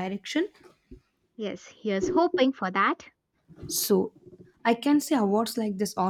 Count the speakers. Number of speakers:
2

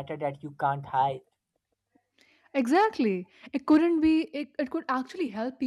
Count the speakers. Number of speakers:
2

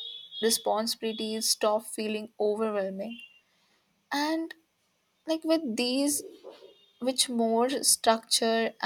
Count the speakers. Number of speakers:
1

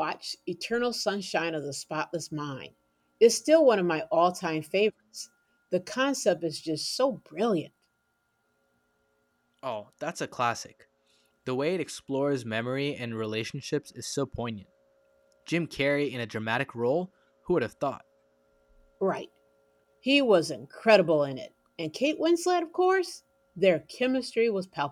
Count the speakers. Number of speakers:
2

